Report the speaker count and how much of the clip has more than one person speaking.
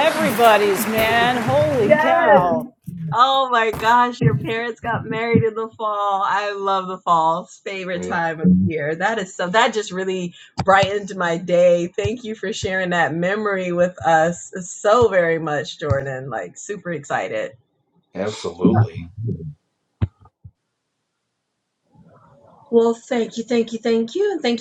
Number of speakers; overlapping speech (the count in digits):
3, about 4%